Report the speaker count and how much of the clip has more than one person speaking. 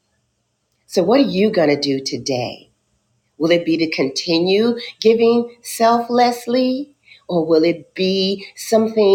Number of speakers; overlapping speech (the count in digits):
1, no overlap